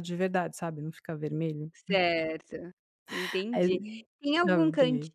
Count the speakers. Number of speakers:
2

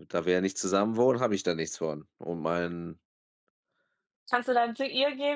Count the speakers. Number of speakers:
2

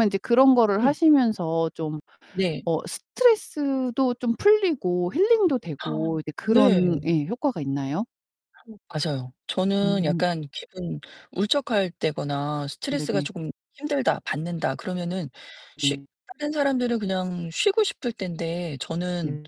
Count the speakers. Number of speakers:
2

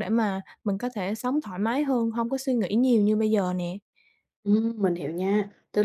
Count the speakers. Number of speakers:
2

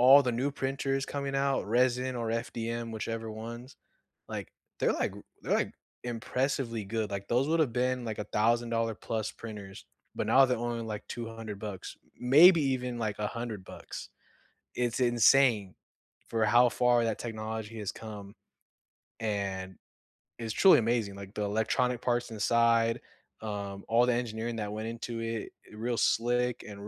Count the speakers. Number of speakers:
1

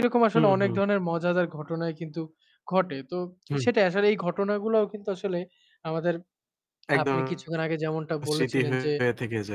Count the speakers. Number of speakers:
2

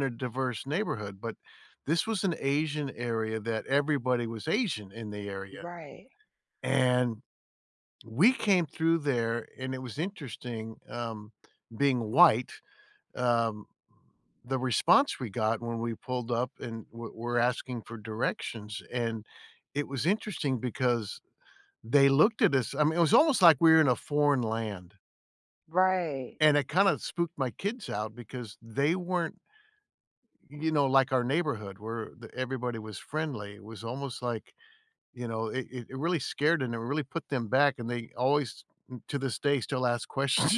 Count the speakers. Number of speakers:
2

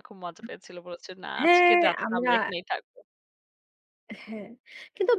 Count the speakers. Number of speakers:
2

